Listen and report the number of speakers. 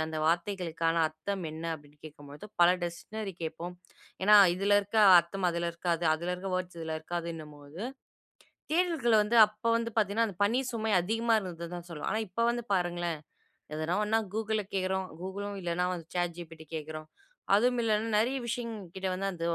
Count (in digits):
1